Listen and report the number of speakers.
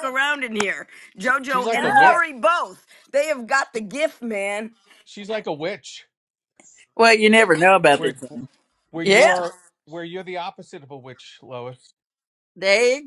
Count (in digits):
3